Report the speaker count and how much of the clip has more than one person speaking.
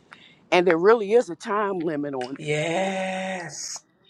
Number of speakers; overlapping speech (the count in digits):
2, no overlap